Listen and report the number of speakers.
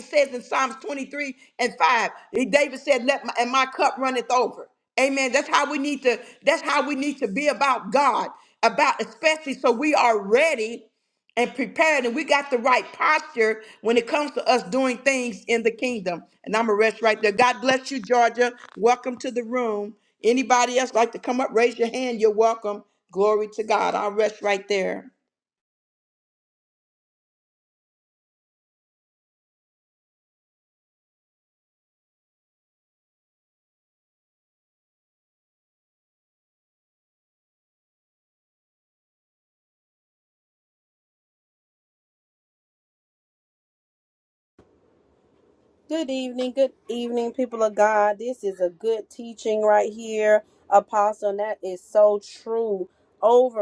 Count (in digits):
2